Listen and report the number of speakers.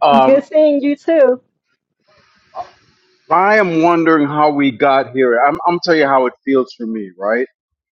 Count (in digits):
2